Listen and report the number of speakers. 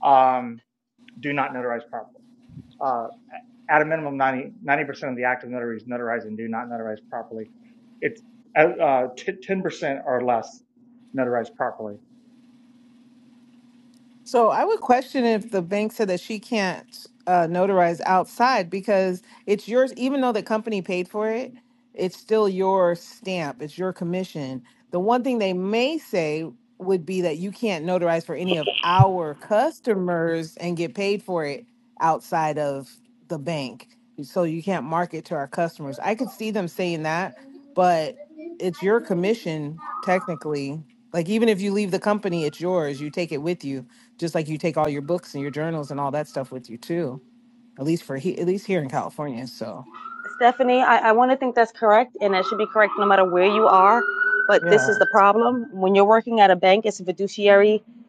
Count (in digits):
3